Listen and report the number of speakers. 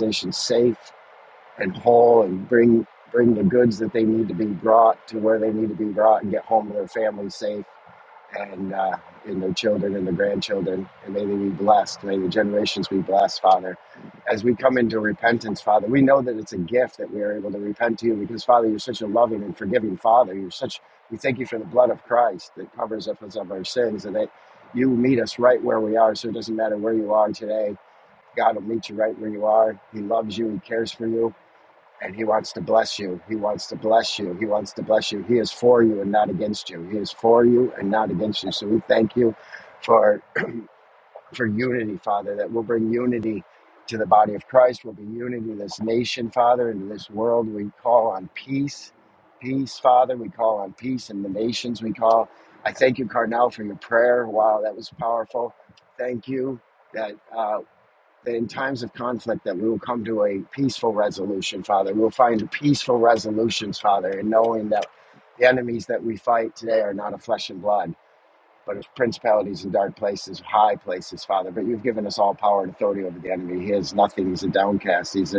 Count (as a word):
one